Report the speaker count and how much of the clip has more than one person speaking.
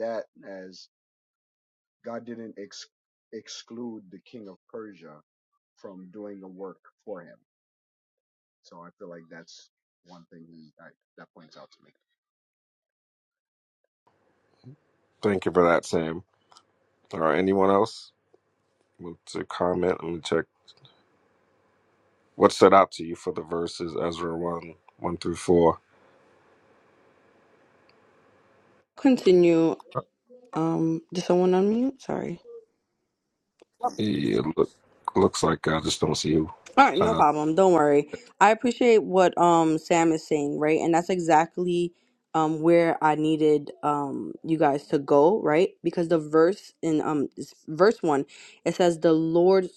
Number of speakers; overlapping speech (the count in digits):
3, about 1%